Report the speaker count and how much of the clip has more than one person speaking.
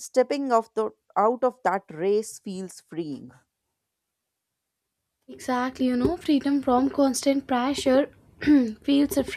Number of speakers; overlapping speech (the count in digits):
2, no overlap